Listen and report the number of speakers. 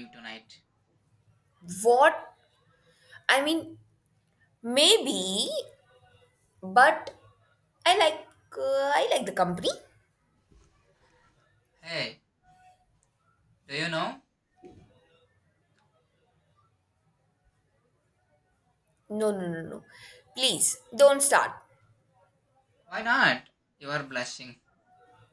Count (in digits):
2